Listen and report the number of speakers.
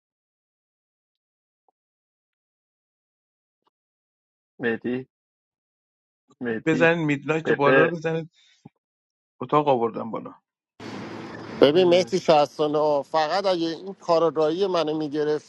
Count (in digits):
3